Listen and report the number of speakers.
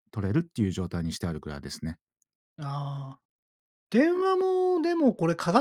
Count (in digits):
2